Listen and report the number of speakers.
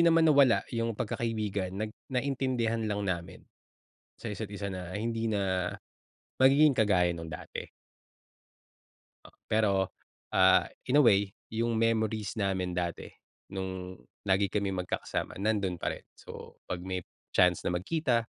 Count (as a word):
one